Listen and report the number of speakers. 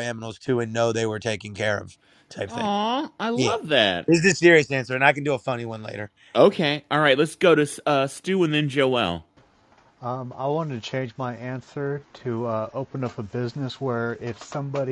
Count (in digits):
3